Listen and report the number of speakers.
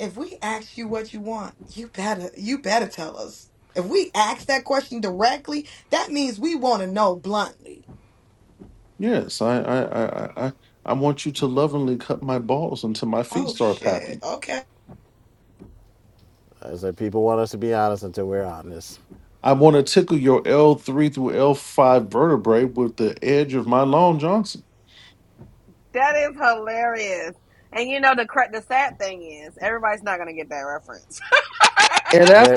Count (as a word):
four